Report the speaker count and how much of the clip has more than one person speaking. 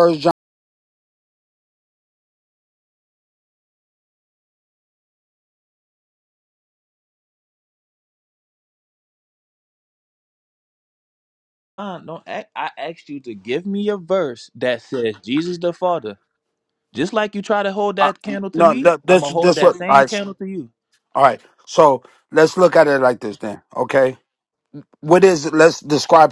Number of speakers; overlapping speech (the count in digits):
2, about 7%